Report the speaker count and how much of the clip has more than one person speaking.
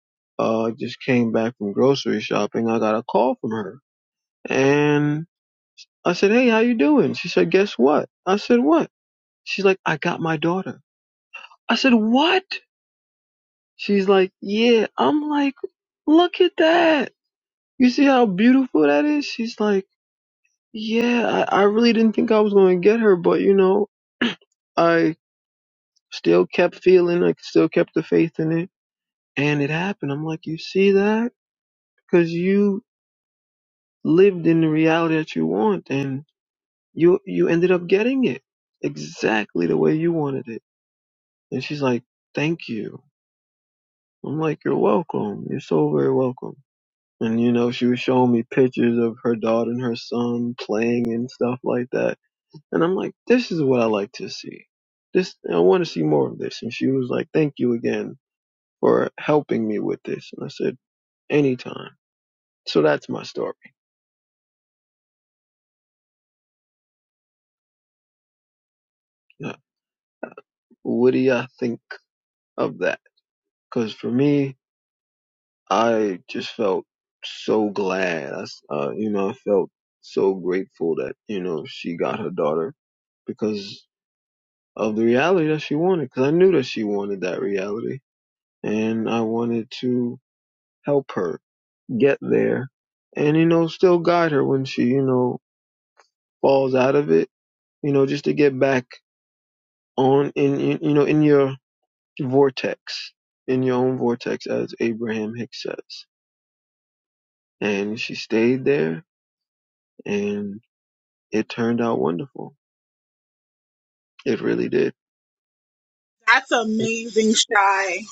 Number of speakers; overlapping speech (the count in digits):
2, no overlap